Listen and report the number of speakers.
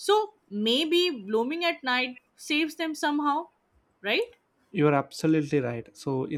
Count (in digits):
2